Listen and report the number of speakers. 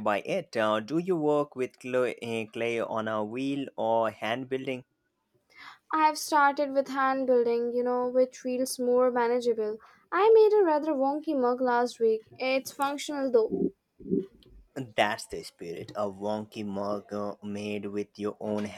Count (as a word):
two